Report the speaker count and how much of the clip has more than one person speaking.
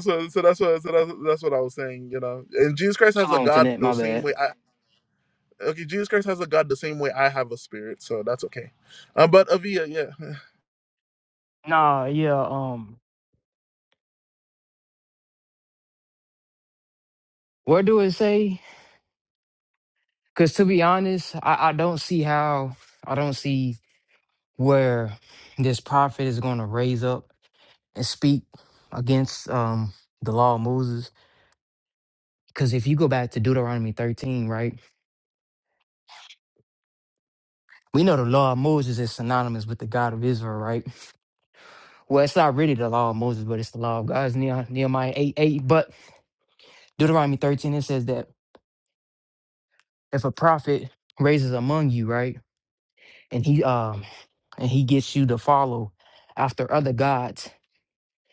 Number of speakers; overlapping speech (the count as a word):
two, about 2%